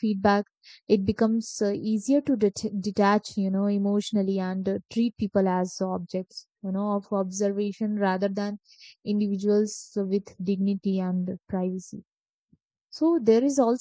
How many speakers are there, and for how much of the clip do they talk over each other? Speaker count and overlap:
one, no overlap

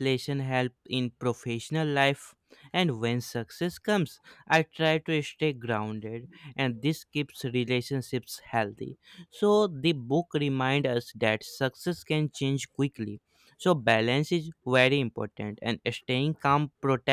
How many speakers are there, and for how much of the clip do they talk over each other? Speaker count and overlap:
one, no overlap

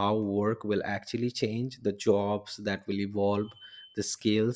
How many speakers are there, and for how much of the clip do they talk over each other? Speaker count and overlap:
one, no overlap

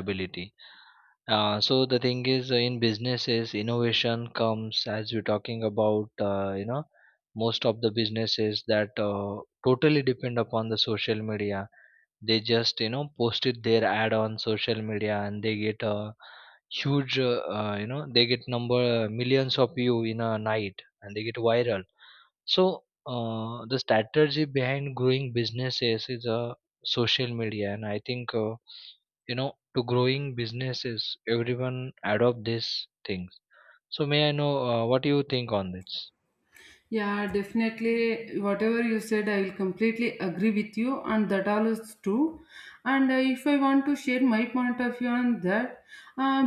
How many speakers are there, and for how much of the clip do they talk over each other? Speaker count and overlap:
two, no overlap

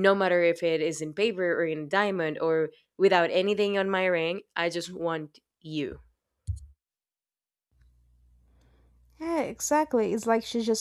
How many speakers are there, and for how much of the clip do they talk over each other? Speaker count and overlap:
two, no overlap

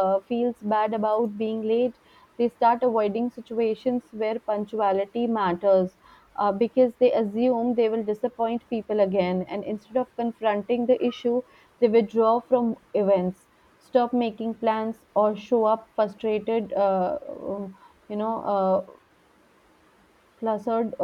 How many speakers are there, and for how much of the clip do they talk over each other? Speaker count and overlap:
one, no overlap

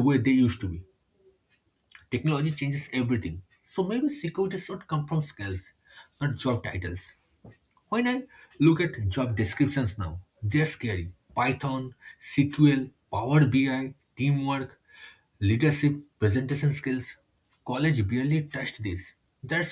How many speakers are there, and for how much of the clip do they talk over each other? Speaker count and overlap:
one, no overlap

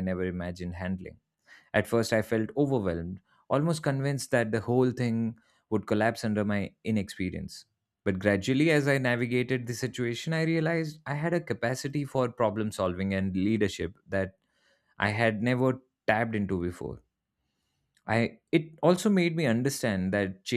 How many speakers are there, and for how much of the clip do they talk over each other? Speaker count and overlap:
one, no overlap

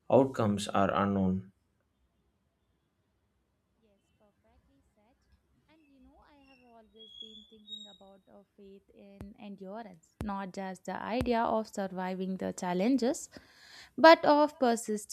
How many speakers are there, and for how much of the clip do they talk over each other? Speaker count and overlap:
two, no overlap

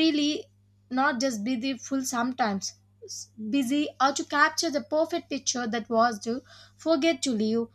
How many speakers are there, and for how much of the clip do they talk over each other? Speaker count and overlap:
one, no overlap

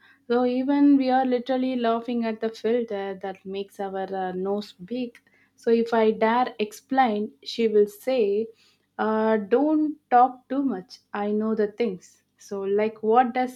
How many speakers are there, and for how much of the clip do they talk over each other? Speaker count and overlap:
one, no overlap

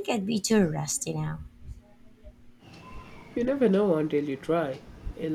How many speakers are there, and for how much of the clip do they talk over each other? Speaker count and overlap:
two, no overlap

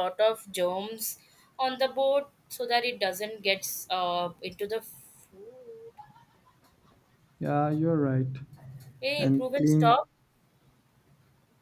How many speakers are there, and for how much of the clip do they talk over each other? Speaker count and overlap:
two, about 7%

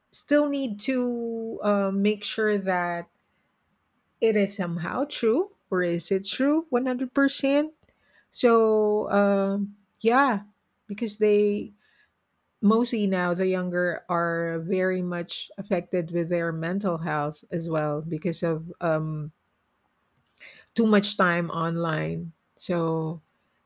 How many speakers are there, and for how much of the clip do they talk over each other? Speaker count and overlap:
one, no overlap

